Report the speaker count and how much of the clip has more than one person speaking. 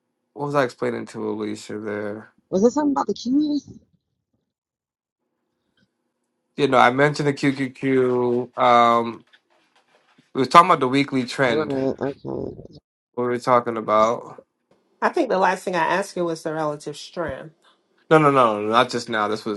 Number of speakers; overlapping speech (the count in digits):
3, about 2%